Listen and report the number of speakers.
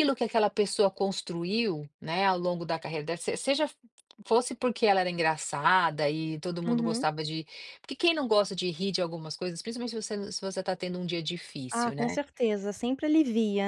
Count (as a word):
two